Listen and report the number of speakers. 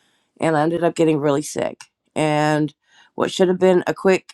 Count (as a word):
one